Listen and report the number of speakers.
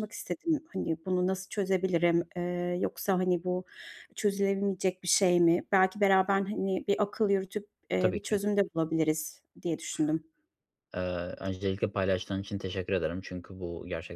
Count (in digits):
2